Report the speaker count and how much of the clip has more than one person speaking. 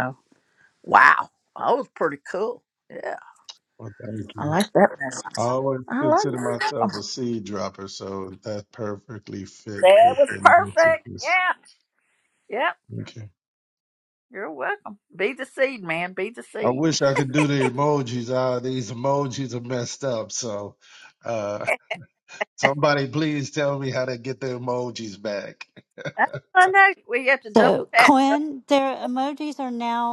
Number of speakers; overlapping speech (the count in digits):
3, about 11%